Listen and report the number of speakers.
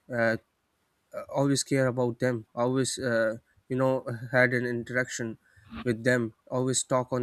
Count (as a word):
one